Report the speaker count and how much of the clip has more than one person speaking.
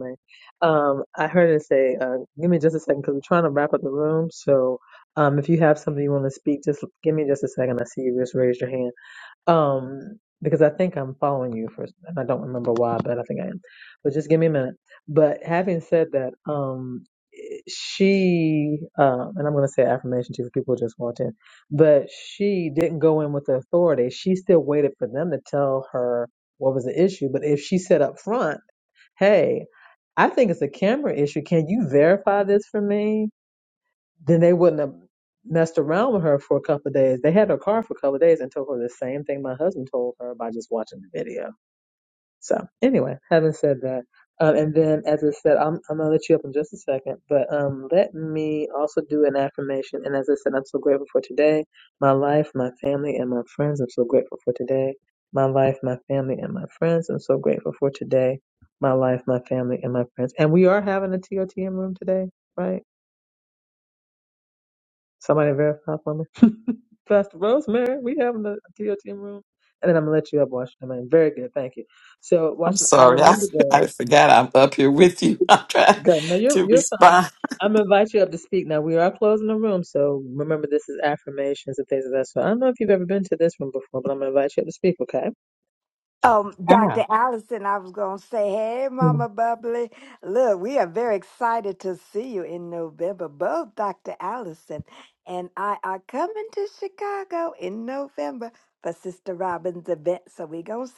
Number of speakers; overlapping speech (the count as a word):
three, about 2%